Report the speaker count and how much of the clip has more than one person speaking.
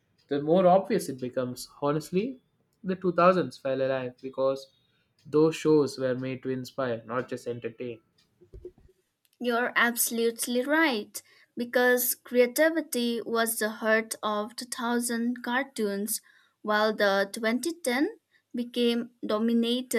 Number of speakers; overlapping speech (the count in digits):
2, no overlap